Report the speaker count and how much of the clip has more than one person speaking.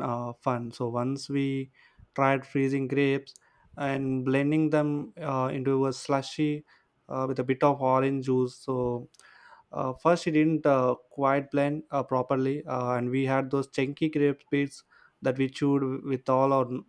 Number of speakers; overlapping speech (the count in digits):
1, no overlap